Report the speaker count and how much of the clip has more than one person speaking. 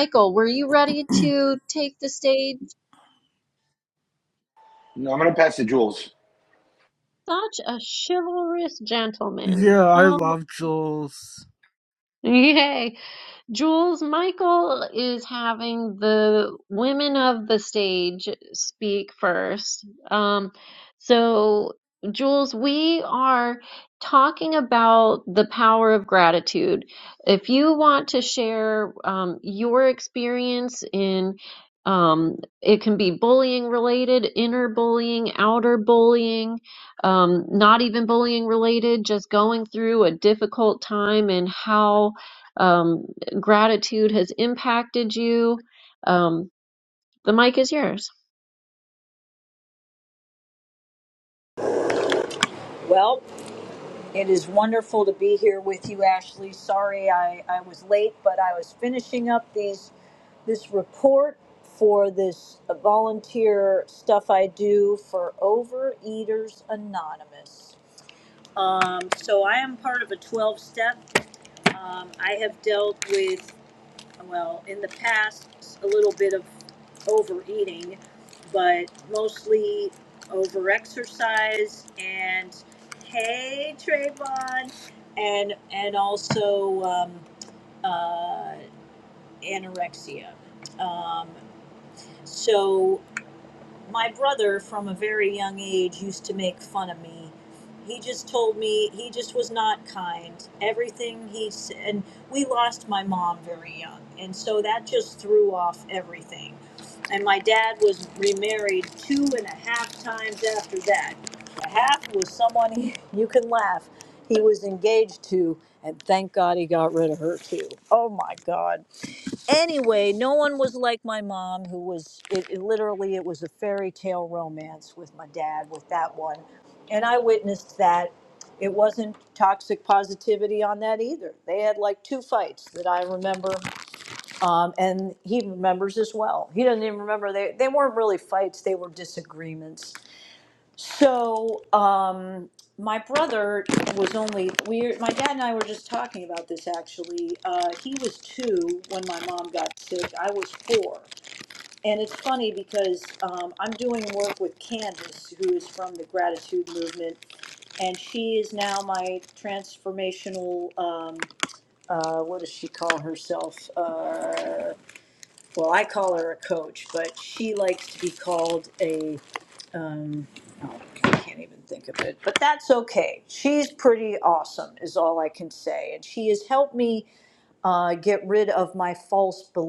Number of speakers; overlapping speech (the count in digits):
4, under 1%